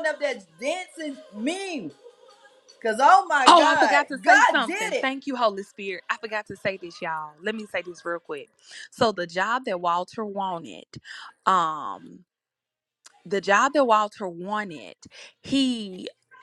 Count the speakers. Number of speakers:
2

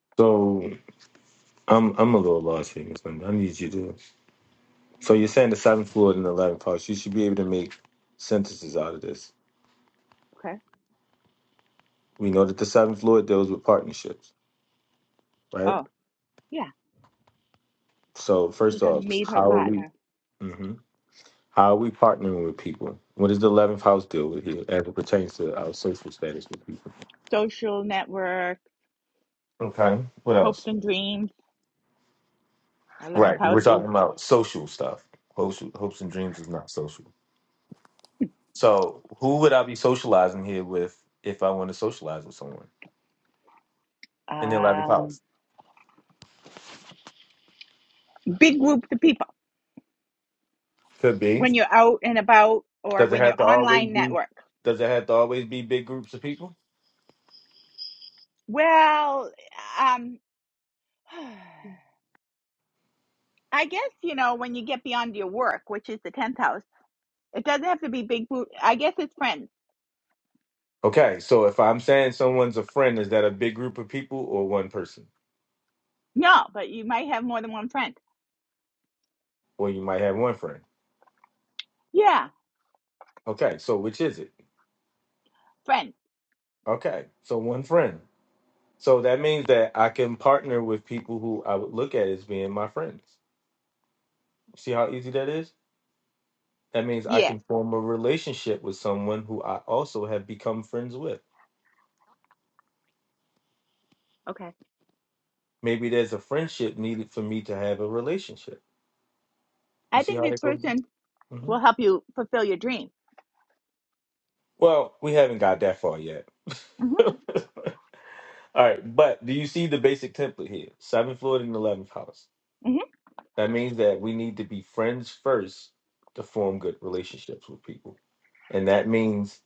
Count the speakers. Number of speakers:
2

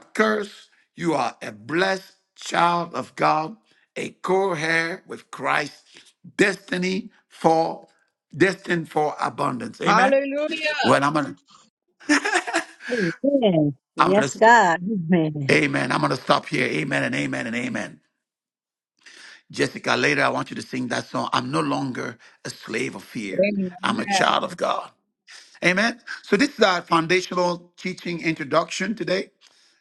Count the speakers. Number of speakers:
3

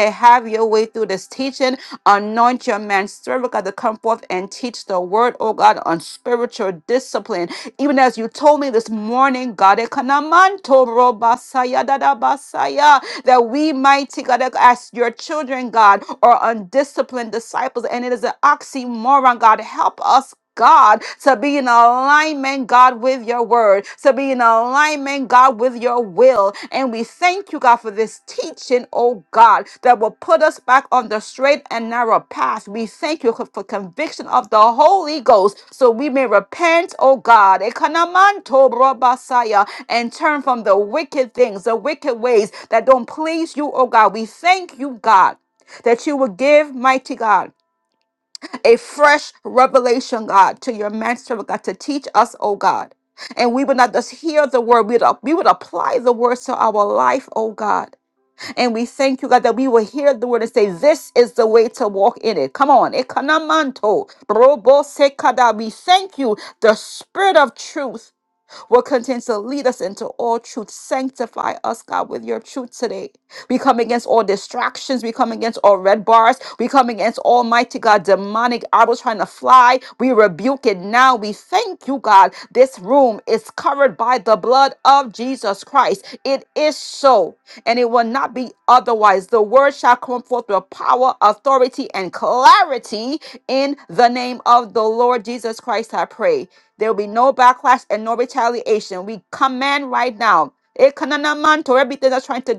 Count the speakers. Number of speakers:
1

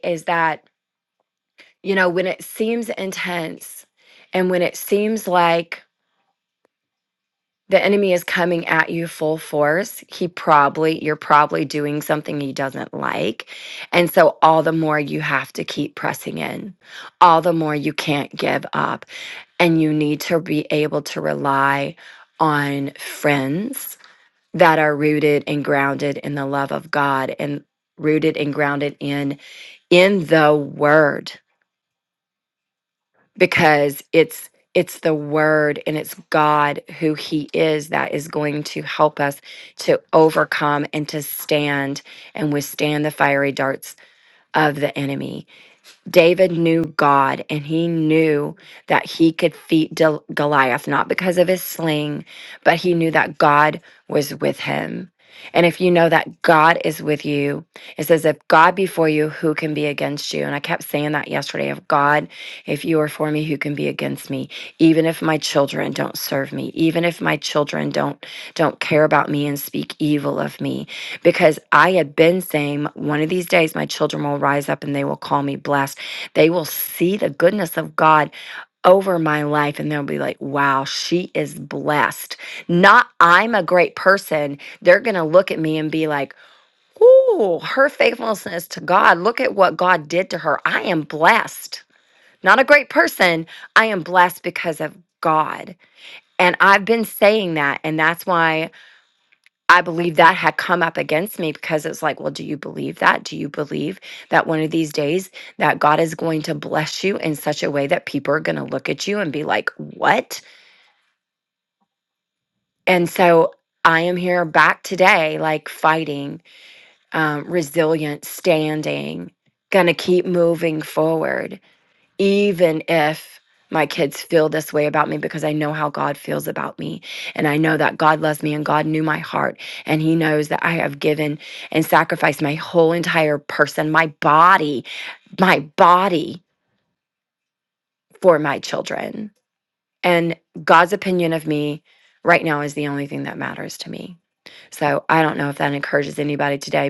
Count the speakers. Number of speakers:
1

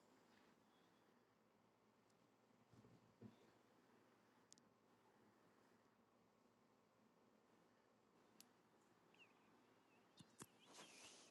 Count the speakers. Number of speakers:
0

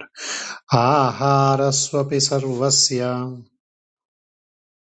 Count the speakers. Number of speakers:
1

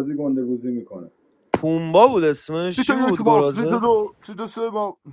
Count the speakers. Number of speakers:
3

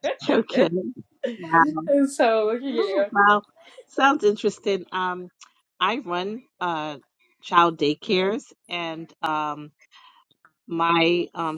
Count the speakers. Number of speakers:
2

